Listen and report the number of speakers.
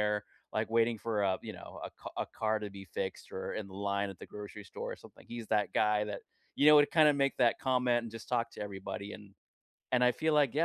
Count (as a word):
one